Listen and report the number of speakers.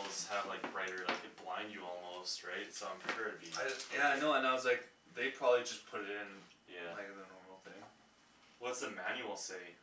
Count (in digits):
2